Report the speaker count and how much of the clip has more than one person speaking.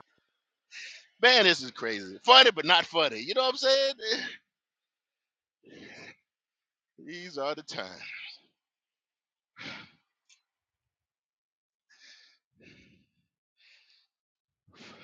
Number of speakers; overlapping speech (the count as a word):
one, no overlap